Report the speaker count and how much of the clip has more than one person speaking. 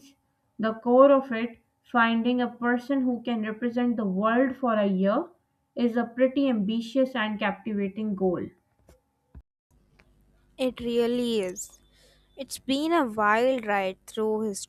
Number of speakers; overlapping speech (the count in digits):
2, no overlap